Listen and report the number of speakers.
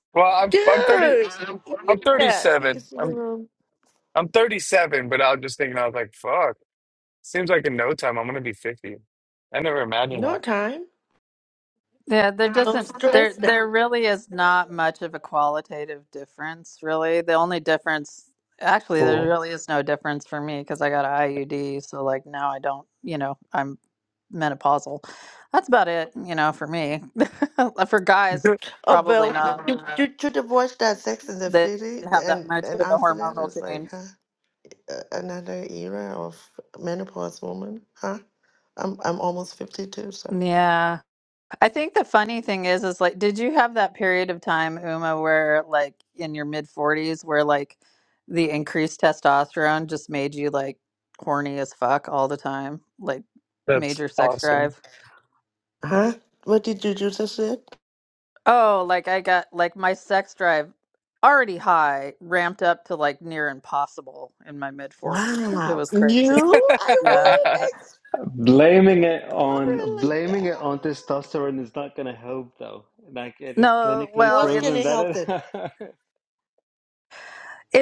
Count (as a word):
four